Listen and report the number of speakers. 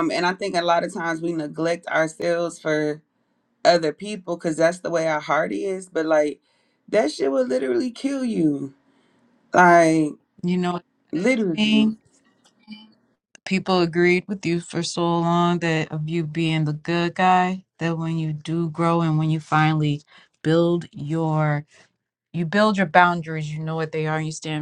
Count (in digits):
2